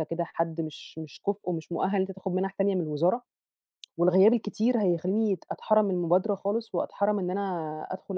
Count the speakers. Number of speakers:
1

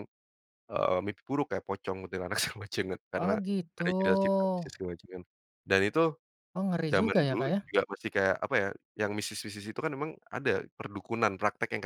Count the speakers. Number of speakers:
2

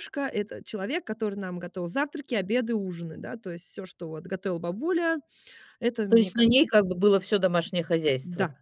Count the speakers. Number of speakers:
2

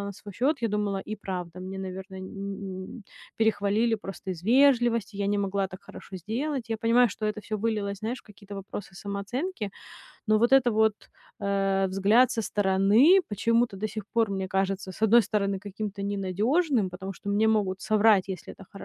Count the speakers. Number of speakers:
1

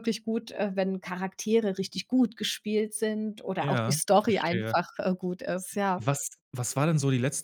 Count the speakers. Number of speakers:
2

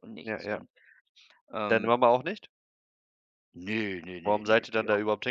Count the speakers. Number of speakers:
2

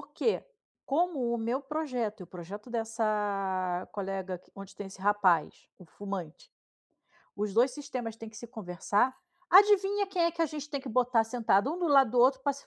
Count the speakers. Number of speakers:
1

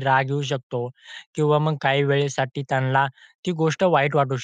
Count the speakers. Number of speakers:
1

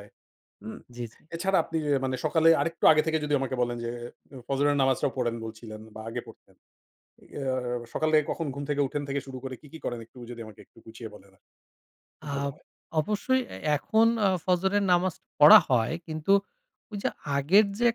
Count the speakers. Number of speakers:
2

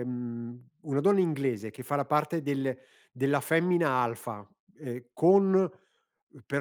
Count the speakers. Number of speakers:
1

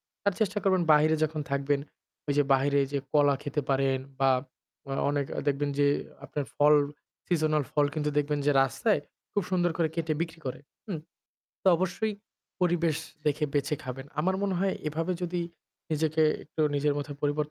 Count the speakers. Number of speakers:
1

